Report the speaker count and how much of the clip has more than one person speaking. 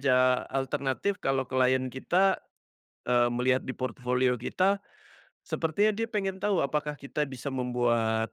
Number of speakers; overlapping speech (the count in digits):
1, no overlap